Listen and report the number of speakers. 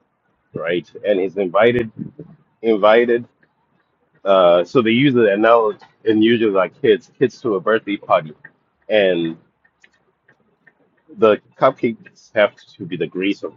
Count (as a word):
one